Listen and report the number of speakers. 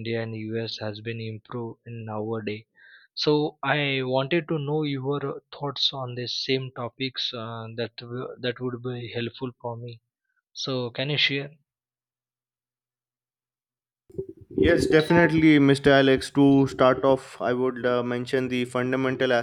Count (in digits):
2